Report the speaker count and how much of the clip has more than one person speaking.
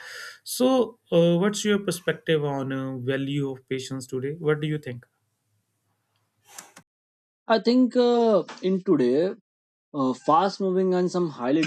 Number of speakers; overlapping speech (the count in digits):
2, no overlap